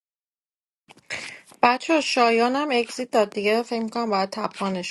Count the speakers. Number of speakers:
1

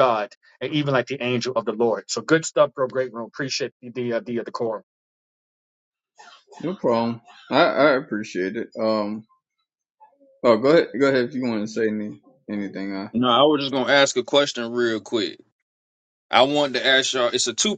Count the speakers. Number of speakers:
3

